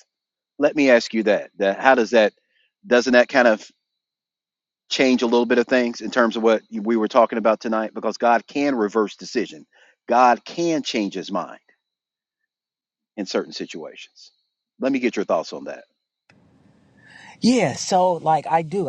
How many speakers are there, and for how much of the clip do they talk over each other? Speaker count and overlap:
two, no overlap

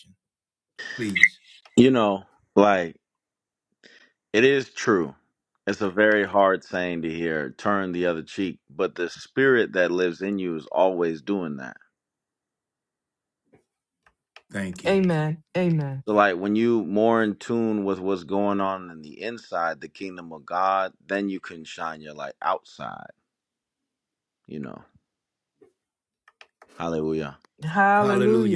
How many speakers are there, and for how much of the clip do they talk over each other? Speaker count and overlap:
three, about 3%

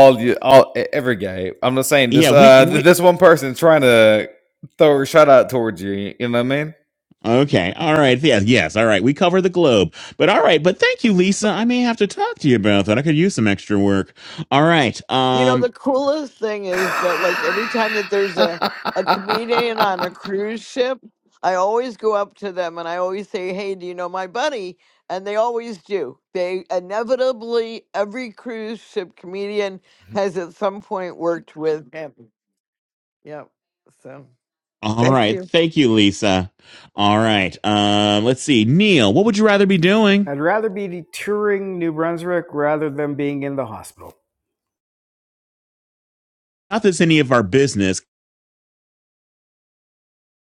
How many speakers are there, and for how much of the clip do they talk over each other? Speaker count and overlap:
four, about 3%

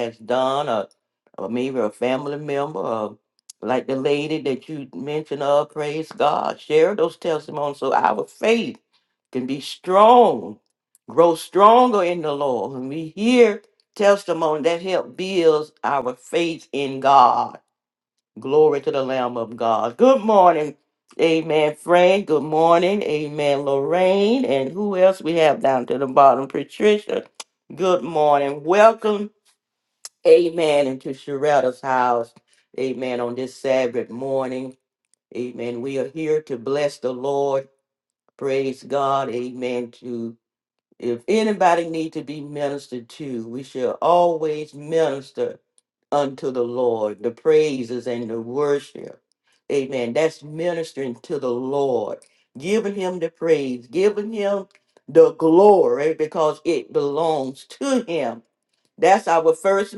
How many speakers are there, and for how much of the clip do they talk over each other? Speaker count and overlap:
one, no overlap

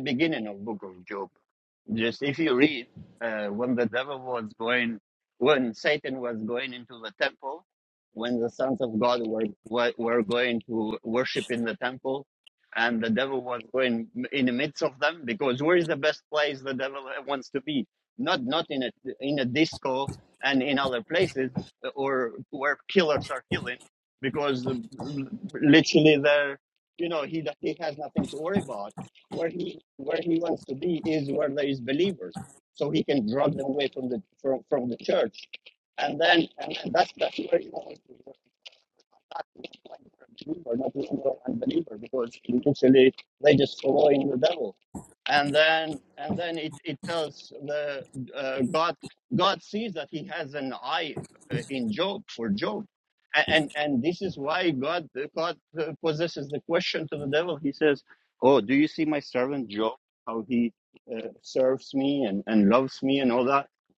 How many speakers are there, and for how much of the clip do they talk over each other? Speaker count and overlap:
one, no overlap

